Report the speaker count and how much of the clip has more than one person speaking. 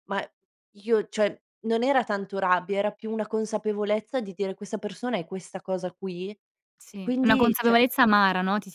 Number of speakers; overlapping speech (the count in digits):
2, about 10%